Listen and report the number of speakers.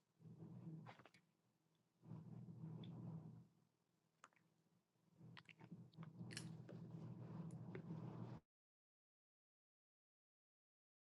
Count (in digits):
0